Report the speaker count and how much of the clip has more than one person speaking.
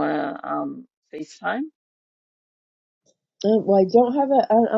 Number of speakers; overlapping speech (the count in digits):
2, no overlap